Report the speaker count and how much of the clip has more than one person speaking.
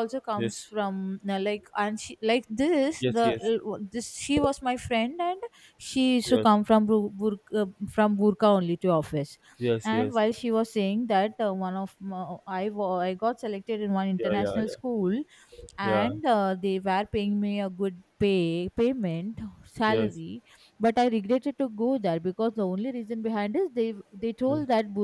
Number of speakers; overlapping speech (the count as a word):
two, about 9%